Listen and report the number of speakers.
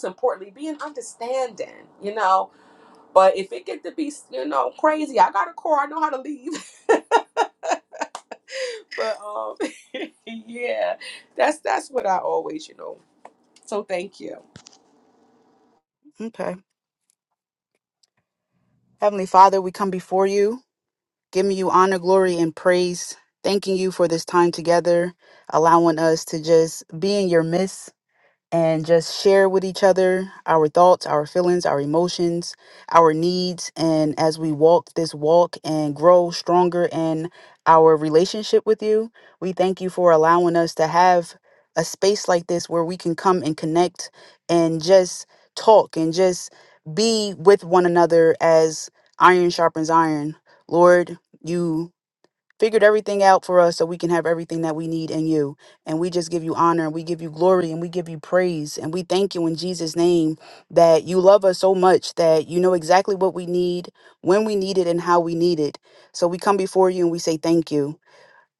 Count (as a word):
two